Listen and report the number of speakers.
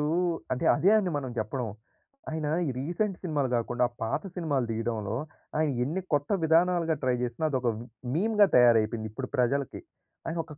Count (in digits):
1